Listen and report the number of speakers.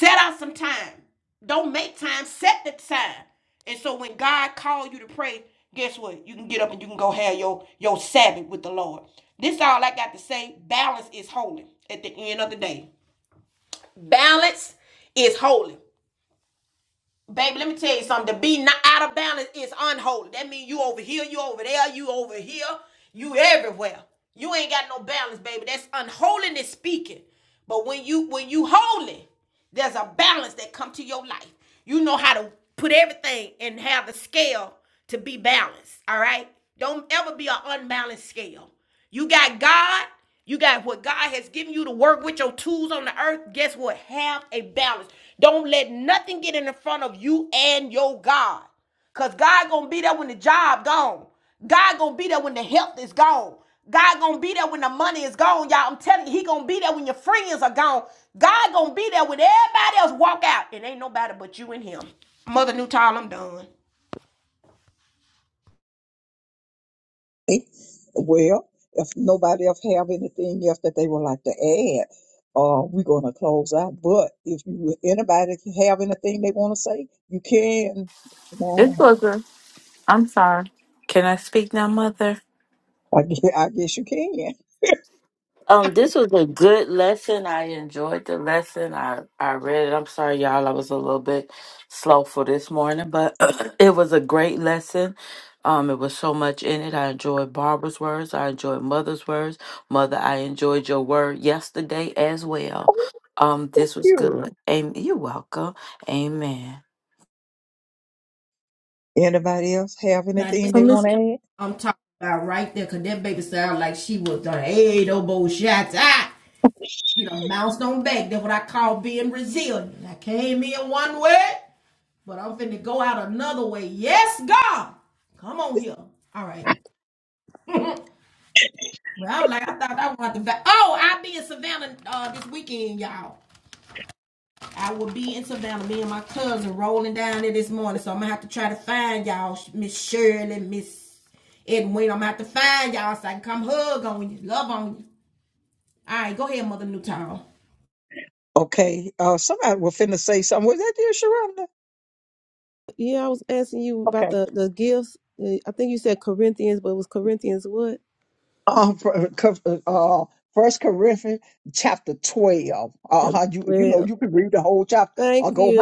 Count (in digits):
4